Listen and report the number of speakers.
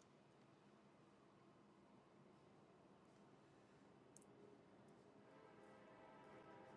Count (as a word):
zero